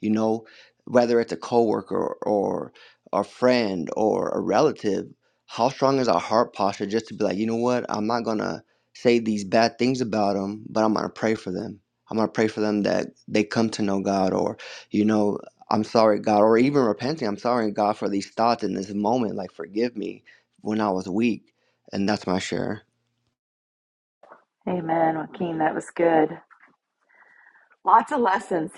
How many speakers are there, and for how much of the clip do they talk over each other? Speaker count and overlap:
2, no overlap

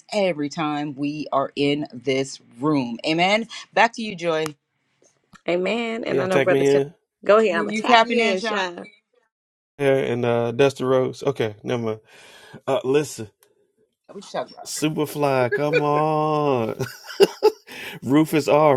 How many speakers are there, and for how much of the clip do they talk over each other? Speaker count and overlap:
3, about 11%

